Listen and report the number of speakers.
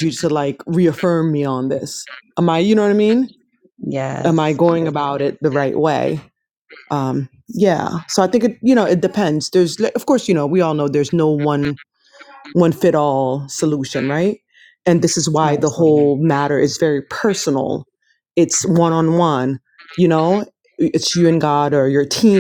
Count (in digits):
2